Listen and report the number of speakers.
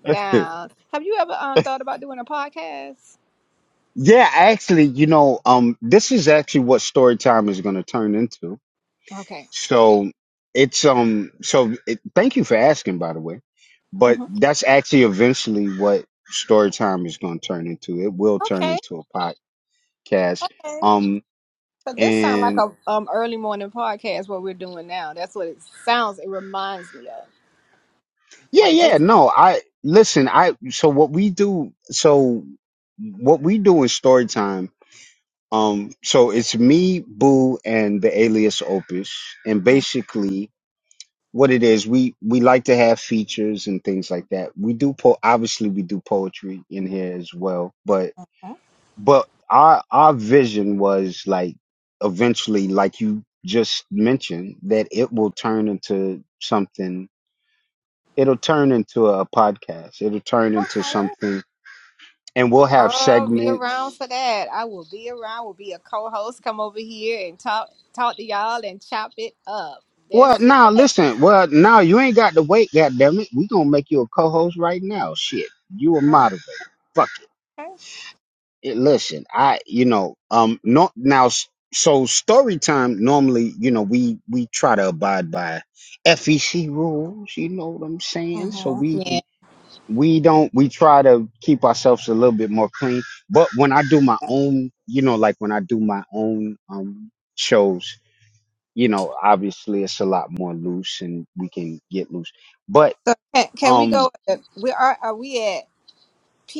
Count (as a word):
two